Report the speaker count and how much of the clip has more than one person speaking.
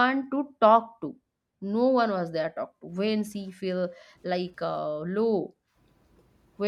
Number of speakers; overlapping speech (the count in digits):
1, no overlap